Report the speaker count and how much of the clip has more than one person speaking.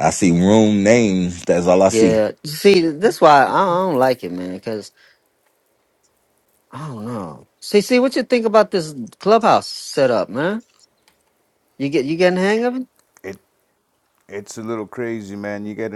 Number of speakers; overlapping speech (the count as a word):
three, about 2%